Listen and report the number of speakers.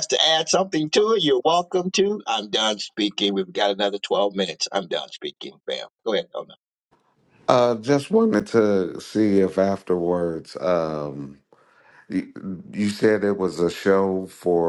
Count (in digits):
2